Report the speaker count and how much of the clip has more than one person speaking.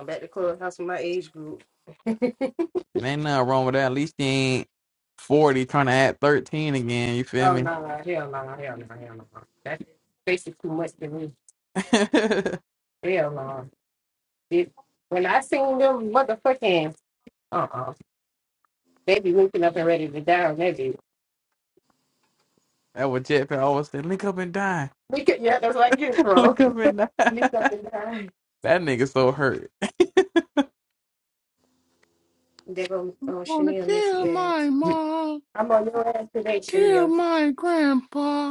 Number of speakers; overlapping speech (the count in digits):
3, about 6%